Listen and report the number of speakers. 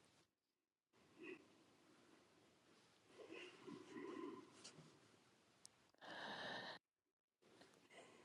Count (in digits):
0